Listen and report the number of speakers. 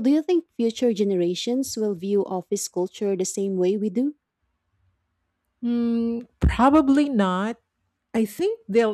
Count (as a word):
two